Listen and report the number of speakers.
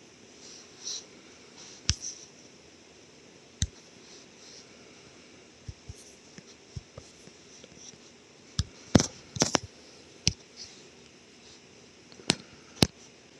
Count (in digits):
0